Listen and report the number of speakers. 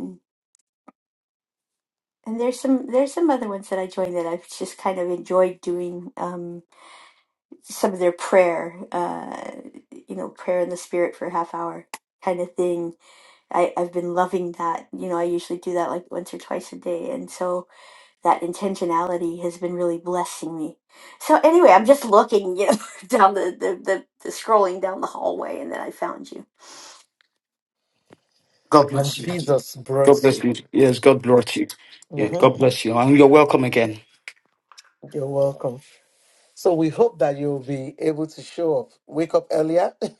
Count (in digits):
3